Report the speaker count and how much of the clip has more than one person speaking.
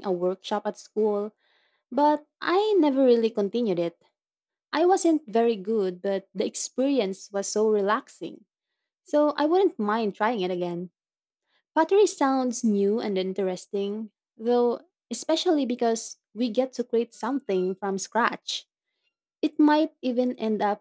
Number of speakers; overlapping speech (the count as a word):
one, no overlap